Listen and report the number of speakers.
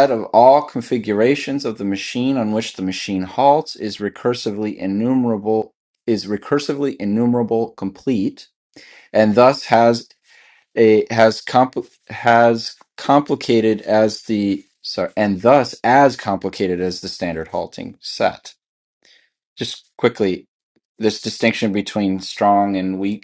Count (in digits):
1